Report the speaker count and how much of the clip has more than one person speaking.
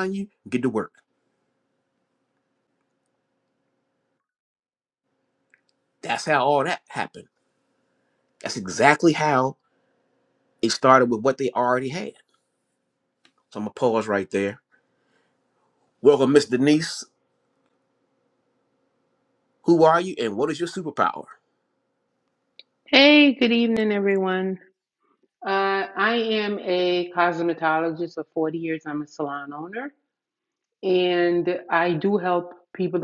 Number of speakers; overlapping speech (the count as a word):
two, no overlap